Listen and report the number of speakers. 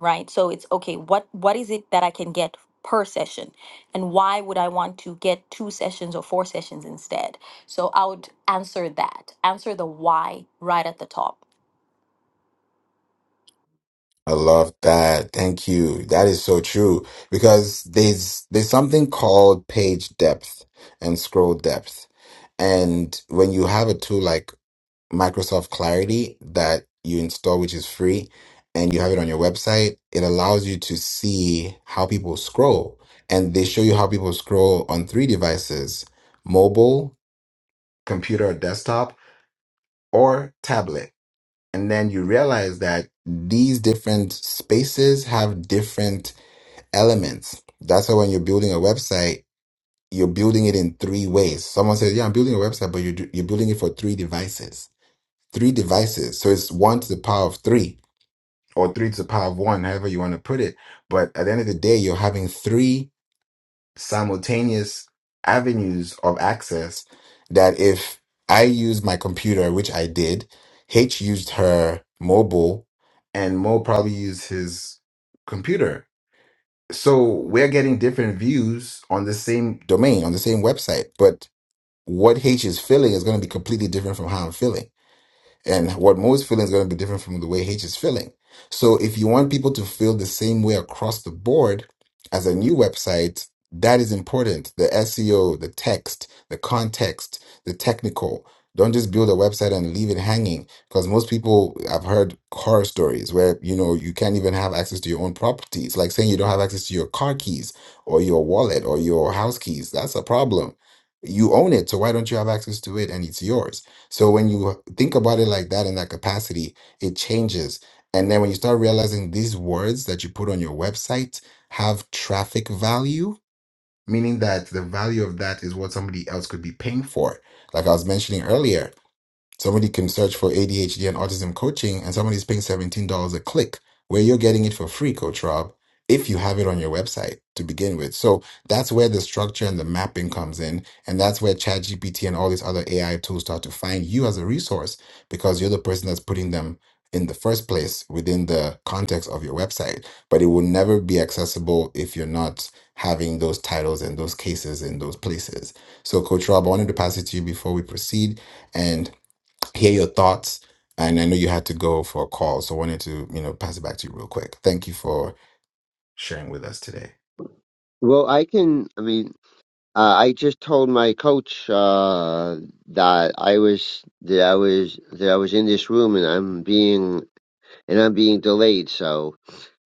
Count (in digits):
3